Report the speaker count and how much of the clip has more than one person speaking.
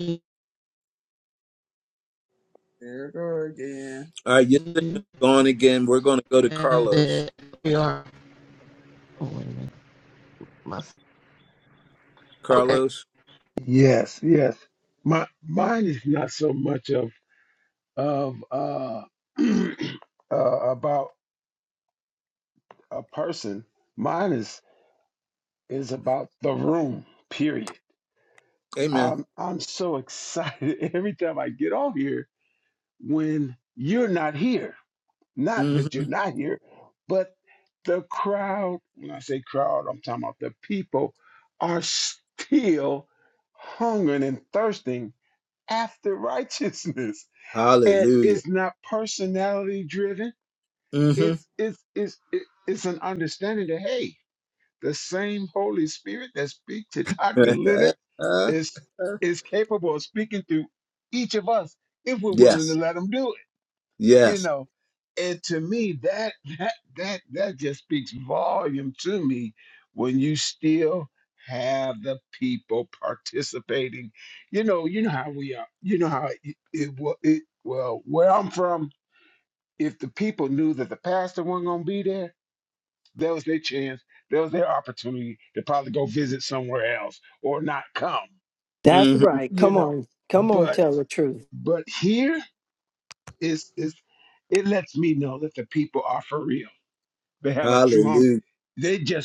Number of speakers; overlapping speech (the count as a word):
five, about 5%